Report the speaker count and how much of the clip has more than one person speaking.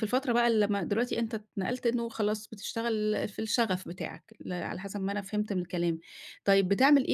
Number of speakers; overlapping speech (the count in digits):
1, no overlap